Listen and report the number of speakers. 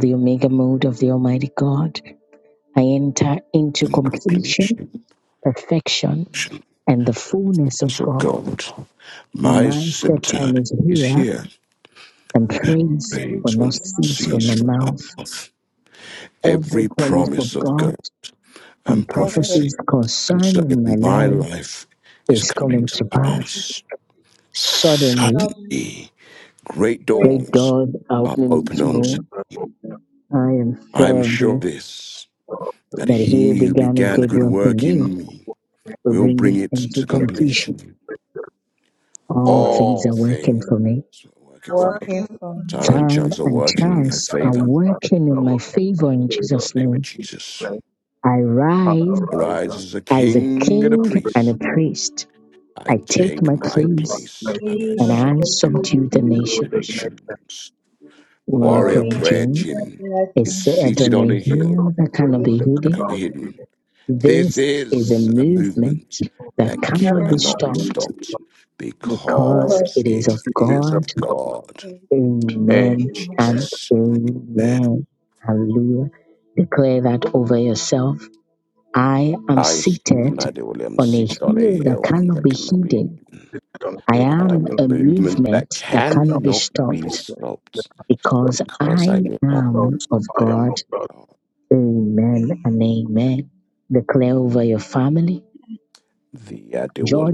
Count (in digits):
4